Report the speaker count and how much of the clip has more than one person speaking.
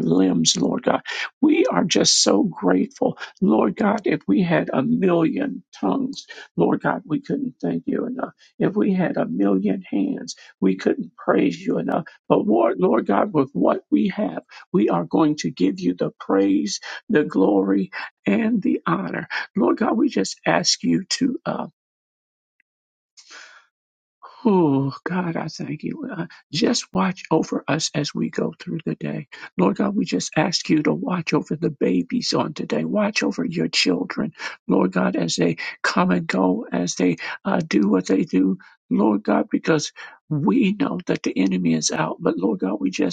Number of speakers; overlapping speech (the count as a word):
one, no overlap